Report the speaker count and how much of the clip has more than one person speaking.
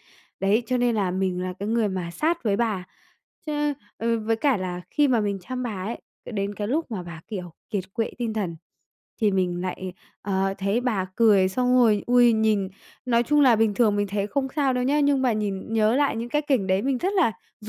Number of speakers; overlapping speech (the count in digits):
1, no overlap